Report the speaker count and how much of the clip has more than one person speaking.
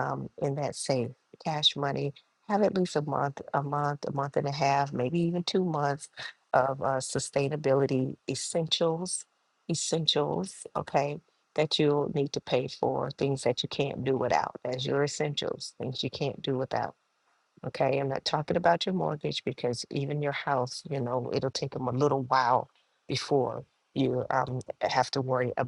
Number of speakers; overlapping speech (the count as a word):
one, no overlap